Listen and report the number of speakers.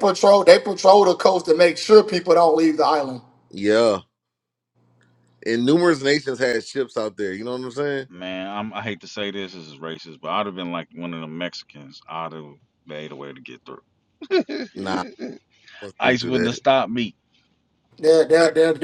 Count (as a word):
three